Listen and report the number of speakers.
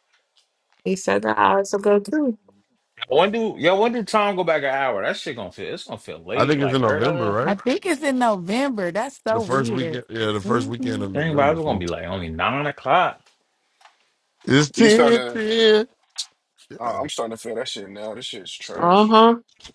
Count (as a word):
five